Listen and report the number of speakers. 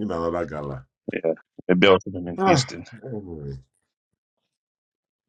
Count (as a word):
two